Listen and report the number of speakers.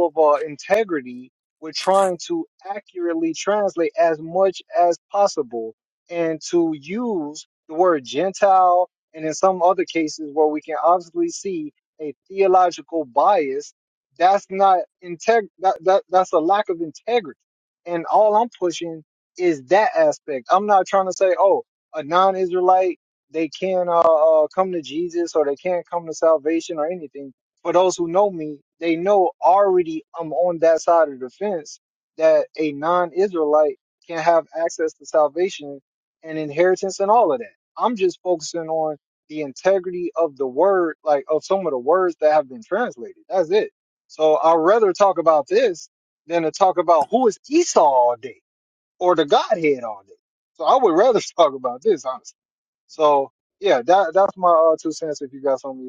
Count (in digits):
1